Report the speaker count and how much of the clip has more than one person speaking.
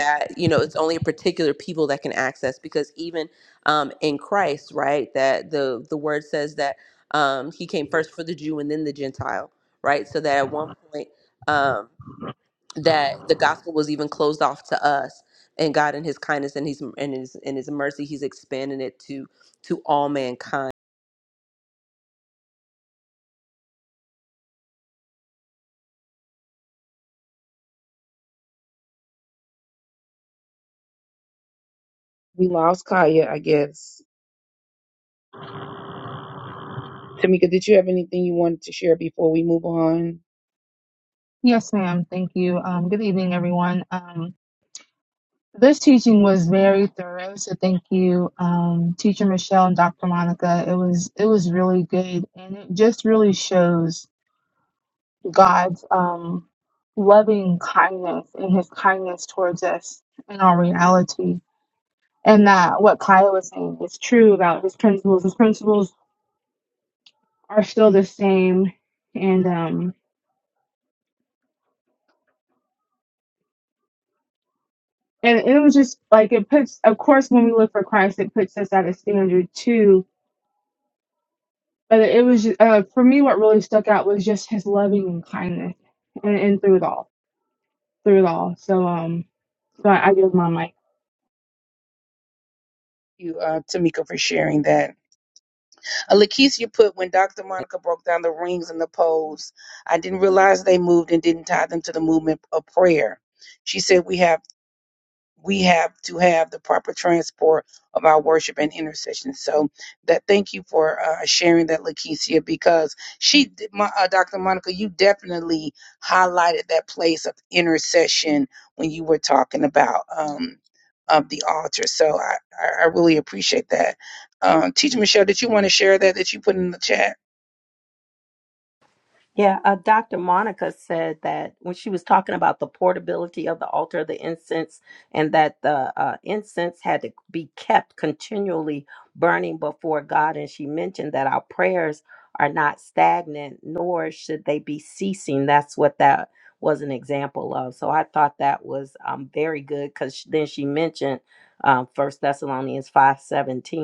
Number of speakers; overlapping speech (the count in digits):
4, no overlap